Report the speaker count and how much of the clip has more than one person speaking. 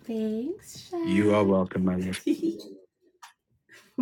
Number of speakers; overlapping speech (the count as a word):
two, about 12%